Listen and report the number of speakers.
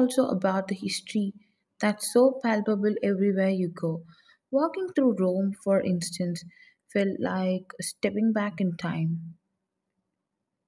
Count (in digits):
1